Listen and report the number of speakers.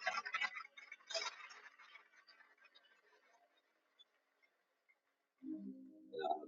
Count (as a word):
zero